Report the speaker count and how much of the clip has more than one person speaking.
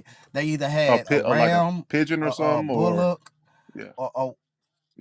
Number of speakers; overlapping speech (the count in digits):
2, about 36%